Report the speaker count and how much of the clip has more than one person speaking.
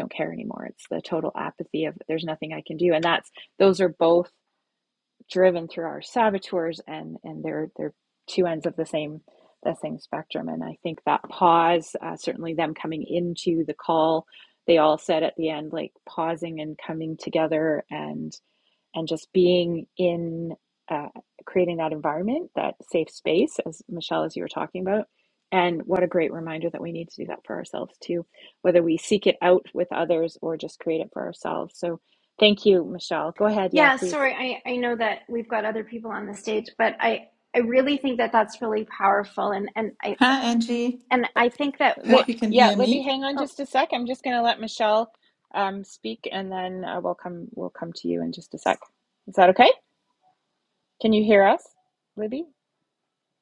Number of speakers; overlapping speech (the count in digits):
3, about 3%